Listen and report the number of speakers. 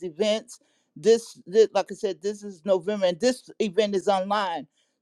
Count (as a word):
one